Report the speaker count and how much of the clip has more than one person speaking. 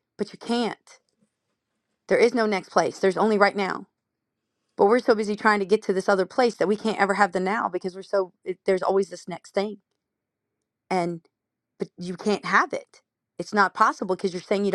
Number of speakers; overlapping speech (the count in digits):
1, no overlap